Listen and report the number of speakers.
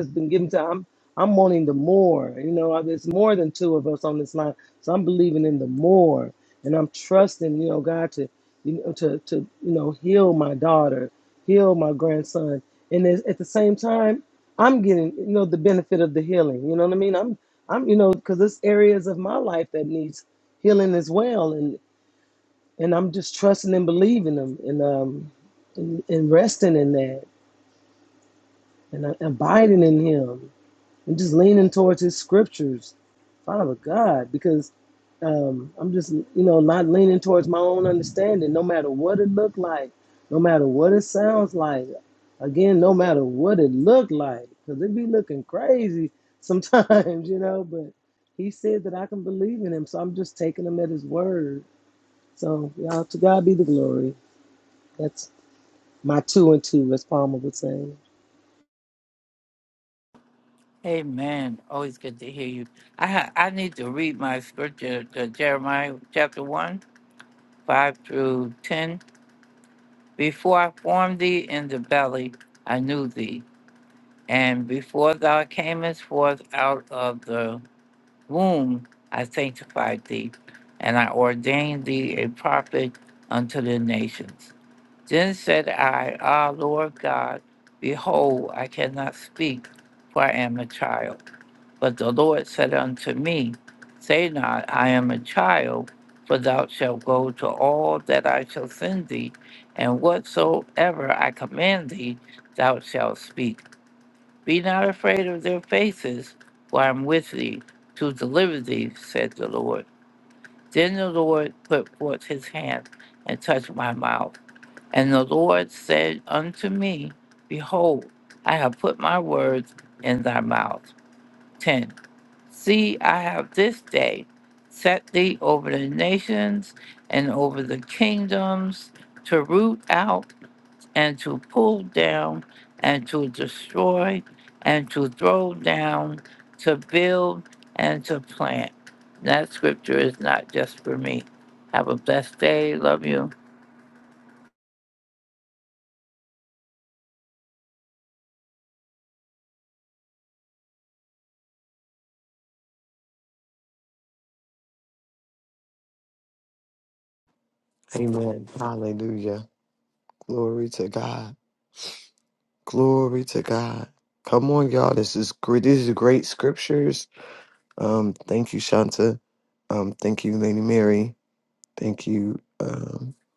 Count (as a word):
three